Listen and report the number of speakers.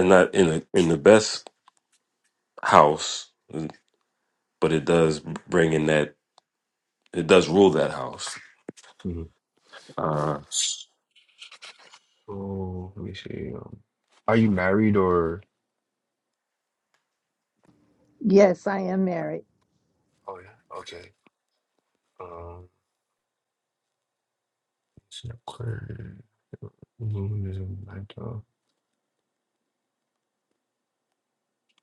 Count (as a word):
three